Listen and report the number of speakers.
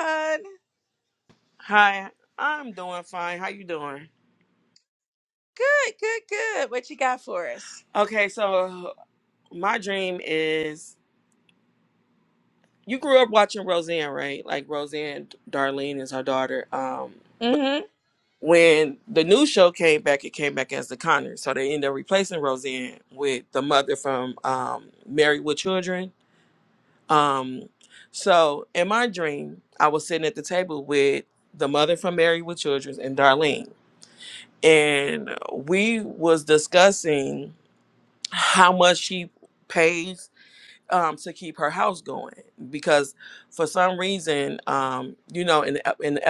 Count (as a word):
two